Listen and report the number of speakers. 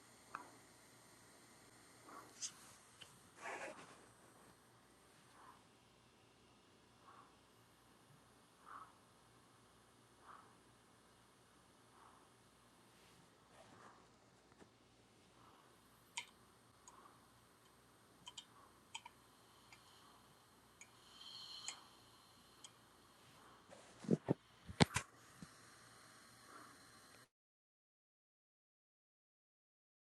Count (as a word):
zero